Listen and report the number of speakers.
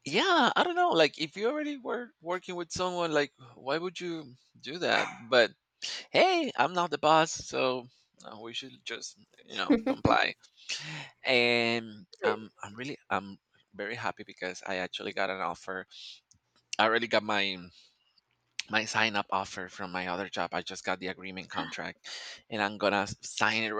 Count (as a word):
one